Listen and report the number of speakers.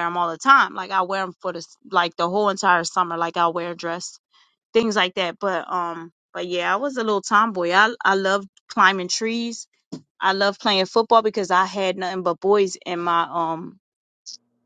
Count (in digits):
1